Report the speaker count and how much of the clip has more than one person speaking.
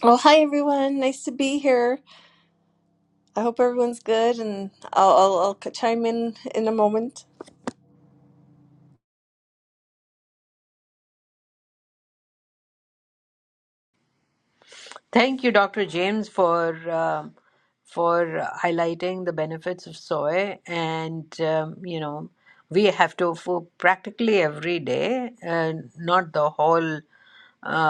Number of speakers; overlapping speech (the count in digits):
2, no overlap